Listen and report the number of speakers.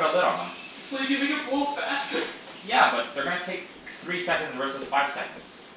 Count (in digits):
2